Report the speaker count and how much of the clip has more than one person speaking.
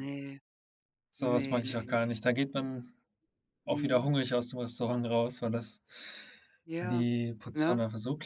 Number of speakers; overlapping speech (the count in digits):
2, about 21%